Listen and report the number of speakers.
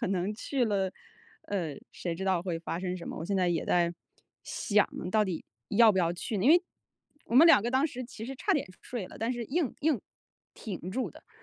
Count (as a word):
one